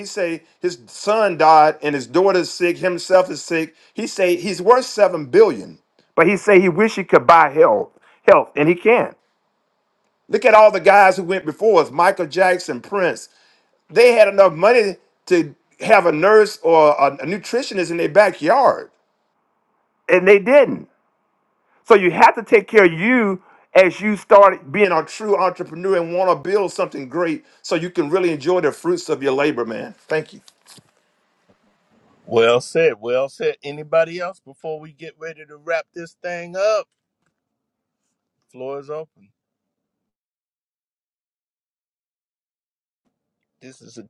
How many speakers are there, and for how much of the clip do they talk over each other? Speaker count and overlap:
2, no overlap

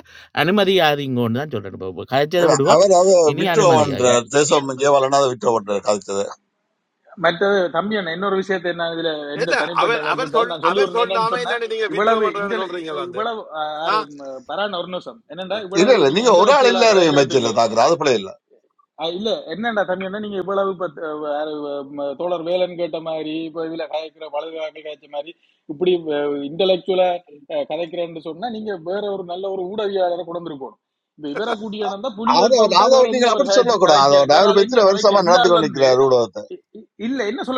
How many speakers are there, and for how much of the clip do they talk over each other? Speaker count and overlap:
4, about 27%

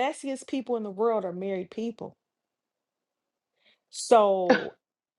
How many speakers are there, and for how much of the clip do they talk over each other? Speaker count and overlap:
1, no overlap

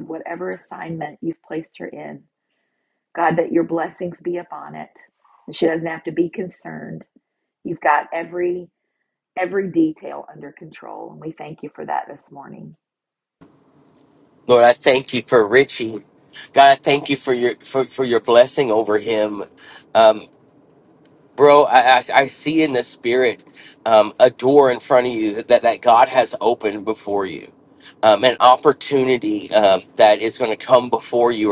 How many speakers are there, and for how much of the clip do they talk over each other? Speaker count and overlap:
2, no overlap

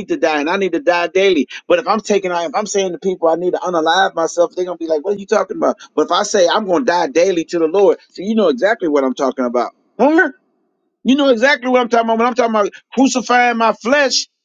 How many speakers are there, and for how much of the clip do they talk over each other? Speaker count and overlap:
1, no overlap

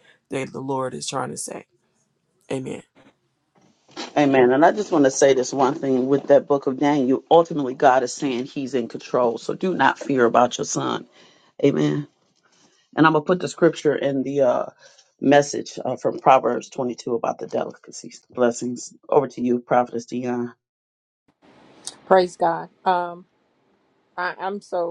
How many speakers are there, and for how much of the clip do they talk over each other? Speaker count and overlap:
3, no overlap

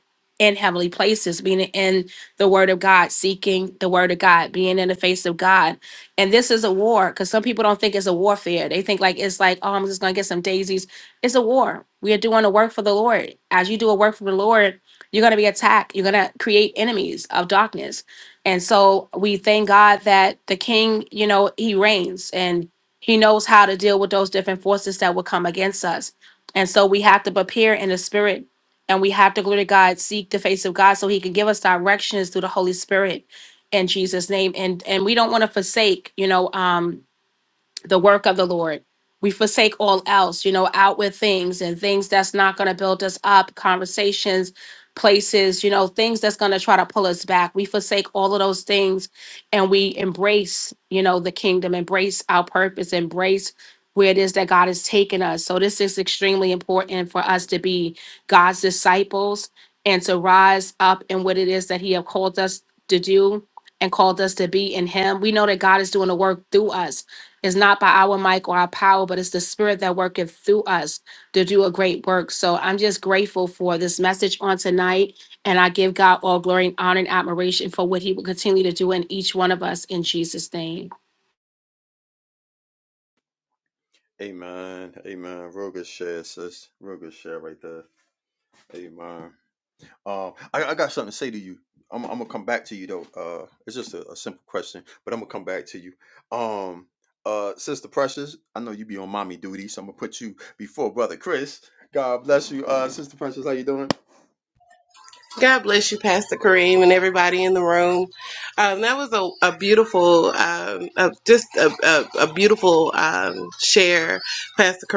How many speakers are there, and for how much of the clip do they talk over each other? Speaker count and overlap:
3, no overlap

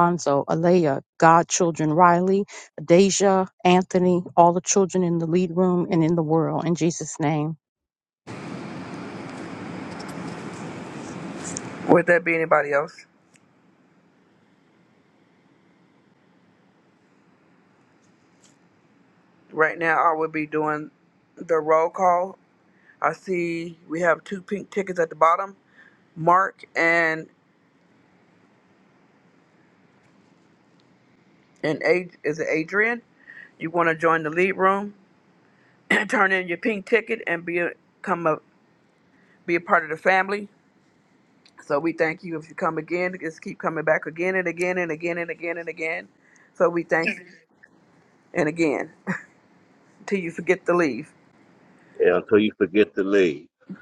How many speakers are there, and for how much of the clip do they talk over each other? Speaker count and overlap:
3, no overlap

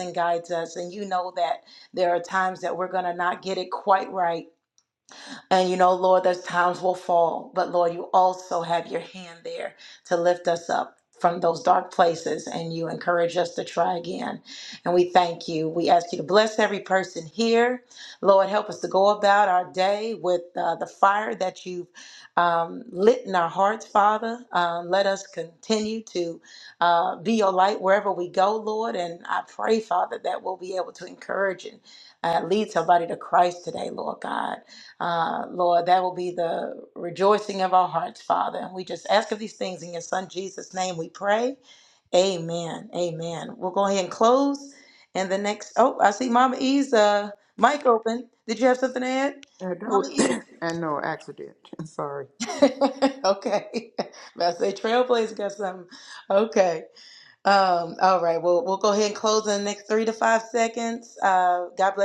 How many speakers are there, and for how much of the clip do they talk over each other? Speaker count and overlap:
2, about 1%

